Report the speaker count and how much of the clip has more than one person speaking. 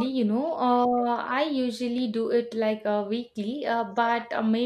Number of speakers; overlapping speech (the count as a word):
one, no overlap